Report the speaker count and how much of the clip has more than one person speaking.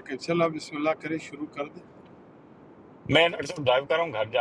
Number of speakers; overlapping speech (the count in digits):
2, no overlap